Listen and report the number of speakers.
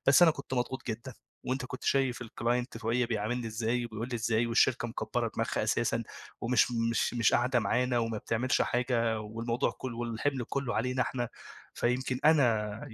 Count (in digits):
1